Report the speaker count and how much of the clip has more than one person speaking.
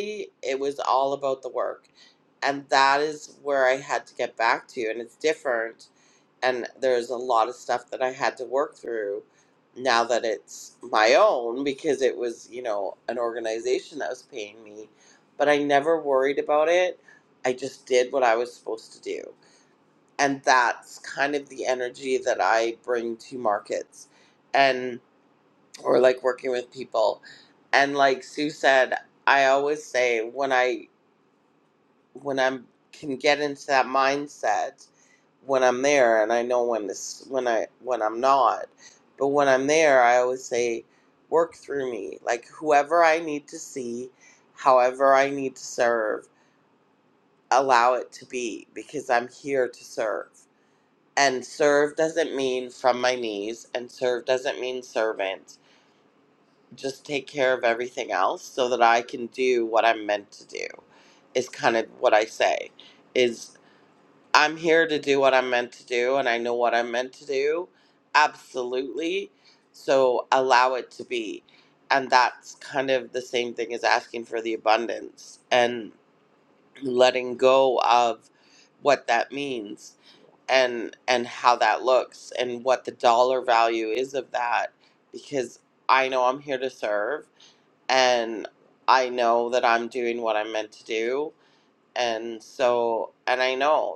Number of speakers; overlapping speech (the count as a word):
one, no overlap